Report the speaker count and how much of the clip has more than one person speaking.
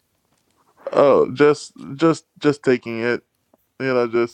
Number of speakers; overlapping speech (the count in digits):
1, no overlap